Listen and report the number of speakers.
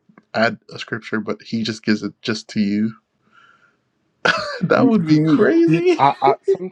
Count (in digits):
2